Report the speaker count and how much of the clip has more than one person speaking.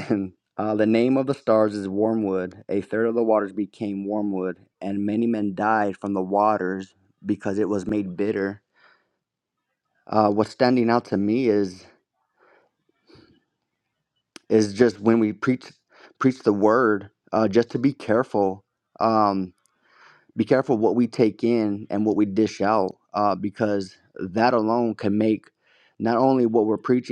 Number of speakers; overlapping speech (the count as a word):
one, no overlap